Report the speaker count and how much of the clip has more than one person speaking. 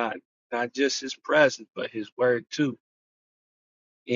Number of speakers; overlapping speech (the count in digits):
1, no overlap